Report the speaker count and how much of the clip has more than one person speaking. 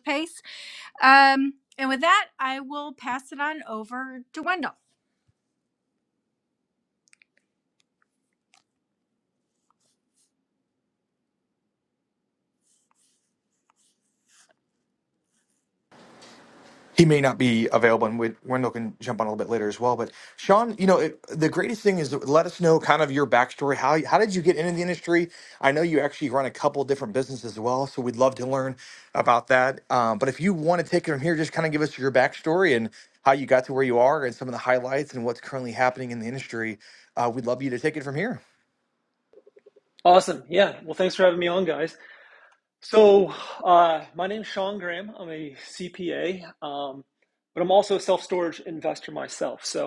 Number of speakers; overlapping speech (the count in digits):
3, no overlap